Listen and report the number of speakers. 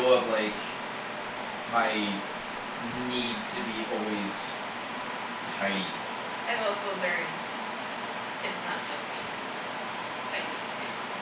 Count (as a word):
two